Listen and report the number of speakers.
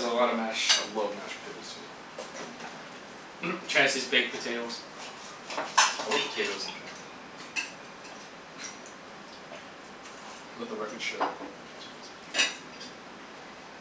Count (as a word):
two